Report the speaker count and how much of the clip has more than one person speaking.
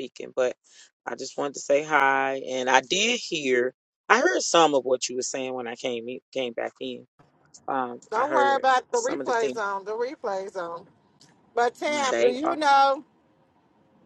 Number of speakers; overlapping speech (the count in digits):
2, about 12%